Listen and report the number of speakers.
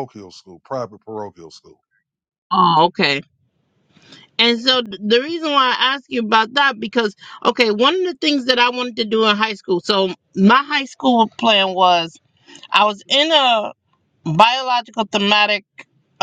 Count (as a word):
two